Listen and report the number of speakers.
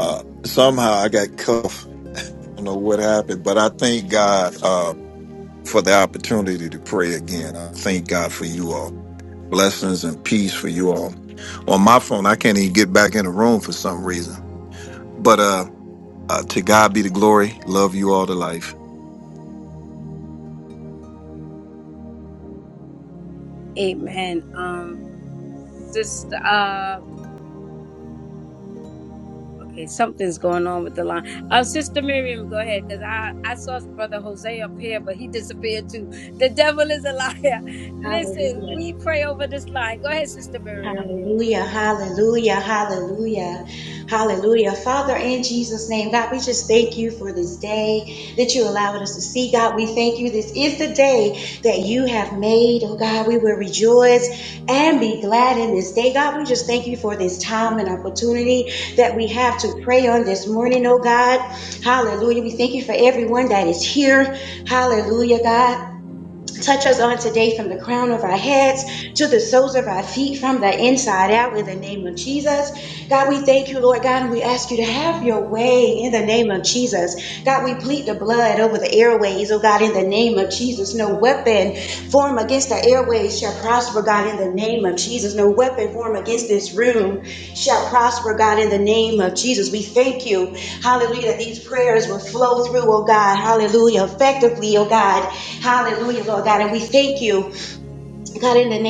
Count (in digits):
3